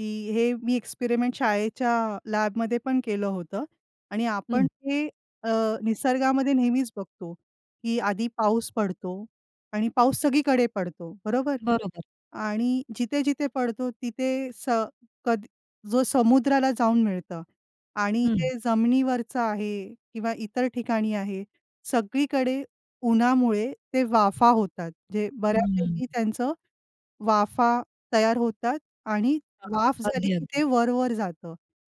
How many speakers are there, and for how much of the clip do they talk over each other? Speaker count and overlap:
two, about 6%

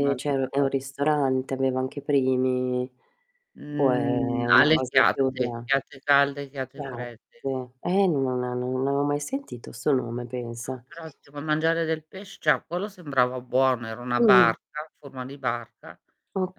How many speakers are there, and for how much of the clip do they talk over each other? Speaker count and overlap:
two, about 18%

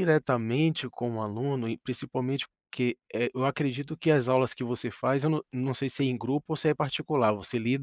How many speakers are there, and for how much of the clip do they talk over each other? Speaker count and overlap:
one, no overlap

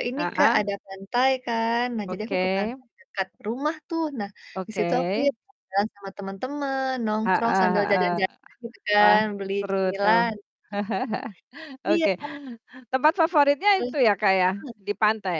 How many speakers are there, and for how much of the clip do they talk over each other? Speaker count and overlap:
two, about 25%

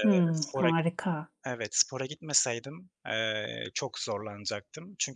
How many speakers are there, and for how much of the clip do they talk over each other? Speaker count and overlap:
two, about 15%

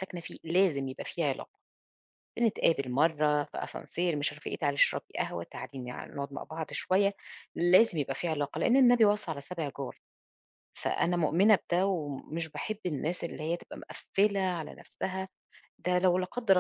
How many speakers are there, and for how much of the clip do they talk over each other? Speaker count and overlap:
one, no overlap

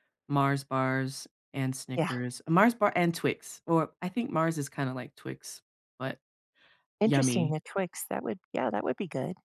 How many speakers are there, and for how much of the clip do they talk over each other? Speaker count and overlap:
two, about 7%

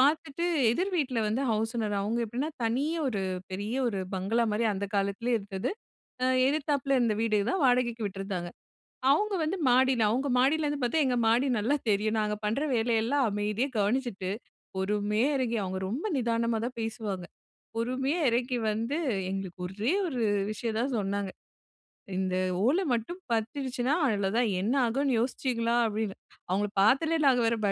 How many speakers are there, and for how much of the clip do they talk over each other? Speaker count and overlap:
one, no overlap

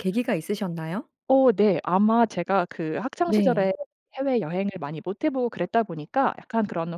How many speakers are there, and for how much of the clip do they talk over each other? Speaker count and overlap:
two, about 5%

